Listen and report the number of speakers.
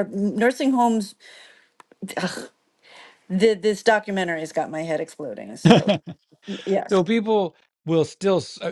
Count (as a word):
two